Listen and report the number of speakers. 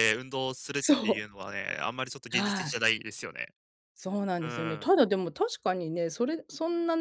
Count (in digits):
2